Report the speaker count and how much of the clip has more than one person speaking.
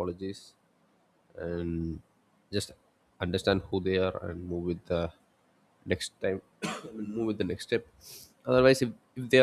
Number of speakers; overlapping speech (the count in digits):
1, no overlap